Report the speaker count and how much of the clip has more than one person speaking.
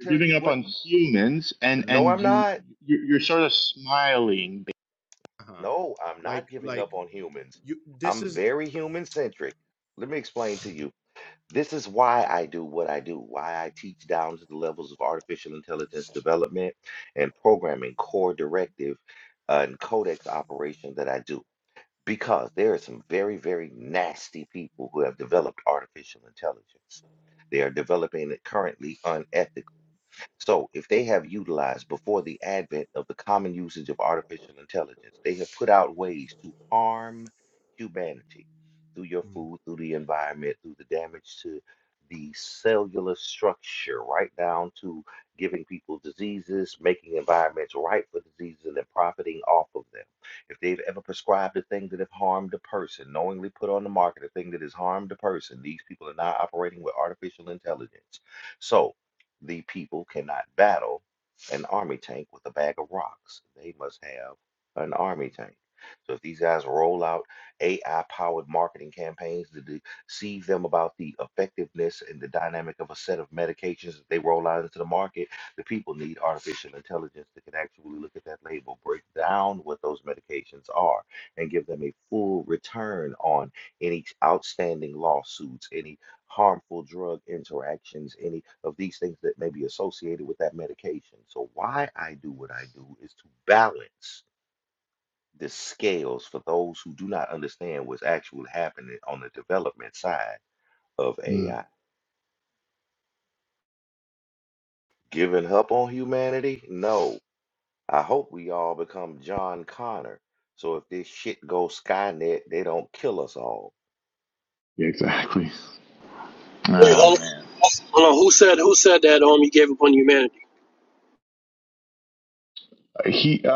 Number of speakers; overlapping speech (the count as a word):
three, about 2%